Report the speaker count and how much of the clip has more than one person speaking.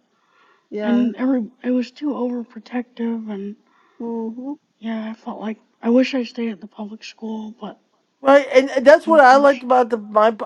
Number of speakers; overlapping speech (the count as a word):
three, about 8%